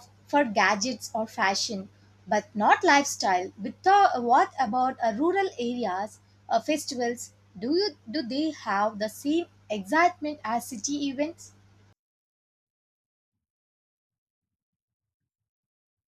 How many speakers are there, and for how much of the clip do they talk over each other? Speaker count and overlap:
1, no overlap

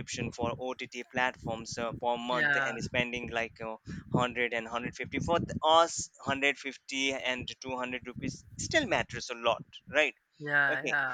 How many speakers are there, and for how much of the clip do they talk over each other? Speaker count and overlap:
2, about 7%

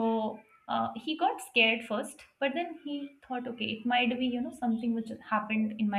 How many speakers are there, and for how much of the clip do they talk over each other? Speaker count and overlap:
1, no overlap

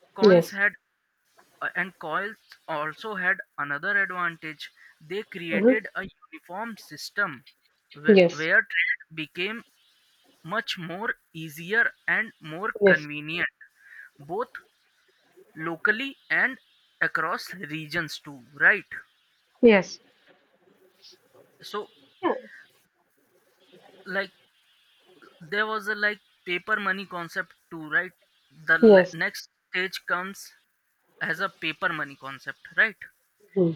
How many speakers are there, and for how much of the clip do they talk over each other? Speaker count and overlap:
2, about 4%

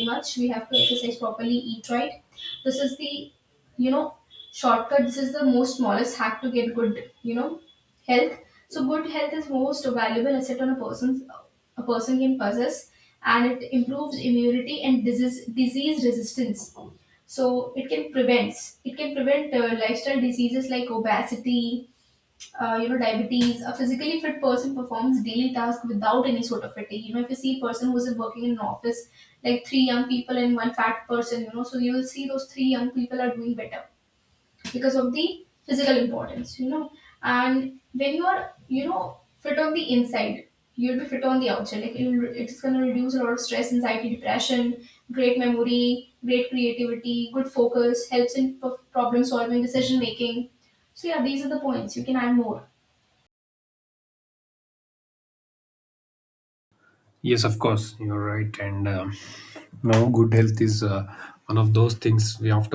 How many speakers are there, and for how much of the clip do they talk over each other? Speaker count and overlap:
2, no overlap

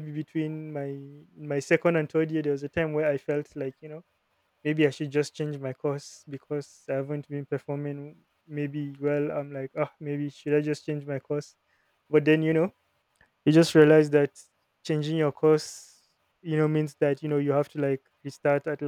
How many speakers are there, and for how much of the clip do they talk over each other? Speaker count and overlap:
1, no overlap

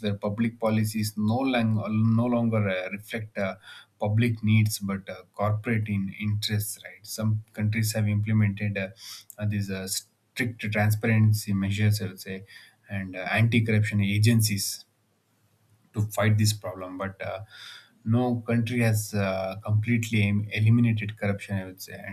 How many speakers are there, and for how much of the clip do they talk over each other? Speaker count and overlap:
1, no overlap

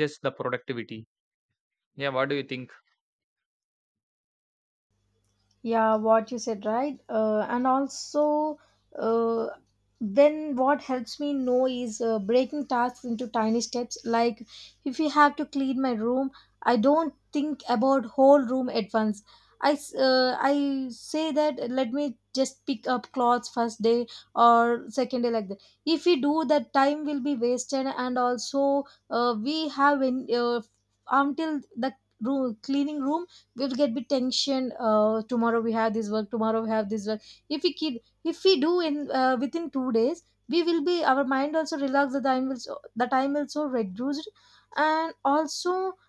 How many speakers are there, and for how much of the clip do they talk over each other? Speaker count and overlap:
2, no overlap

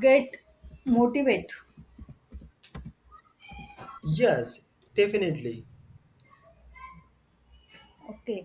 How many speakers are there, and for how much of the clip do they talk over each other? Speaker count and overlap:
2, no overlap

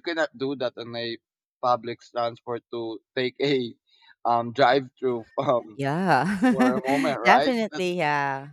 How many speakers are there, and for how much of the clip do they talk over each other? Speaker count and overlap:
2, about 3%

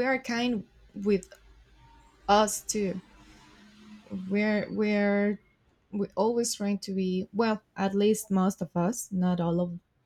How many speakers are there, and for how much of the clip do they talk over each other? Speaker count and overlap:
1, no overlap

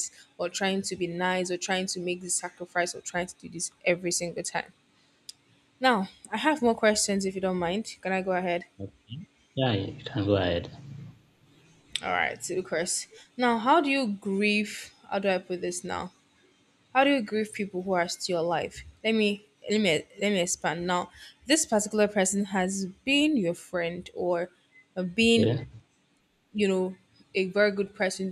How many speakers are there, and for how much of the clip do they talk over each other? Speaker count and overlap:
2, under 1%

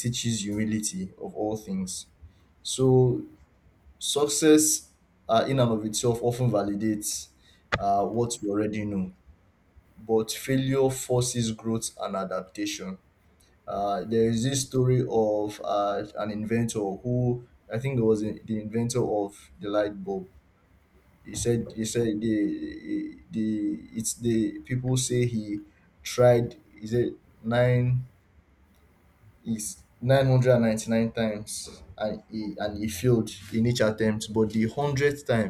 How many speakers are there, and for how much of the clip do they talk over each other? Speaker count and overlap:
1, no overlap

